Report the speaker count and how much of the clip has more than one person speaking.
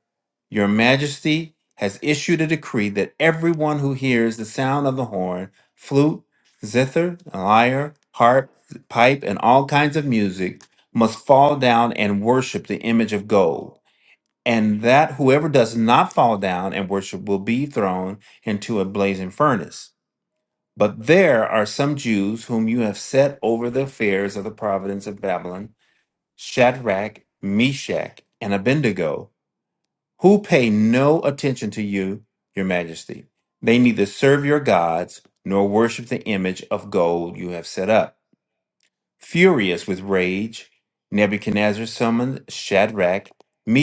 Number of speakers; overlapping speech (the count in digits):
1, no overlap